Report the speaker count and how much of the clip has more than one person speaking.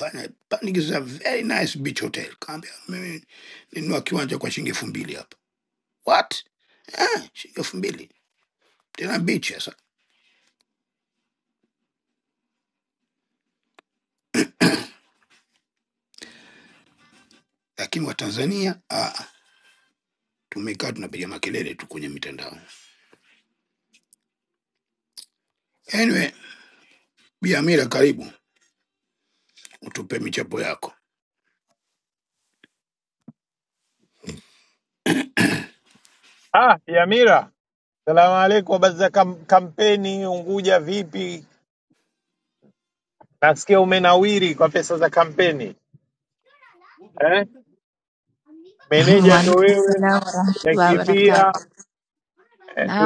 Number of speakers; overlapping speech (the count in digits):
3, about 4%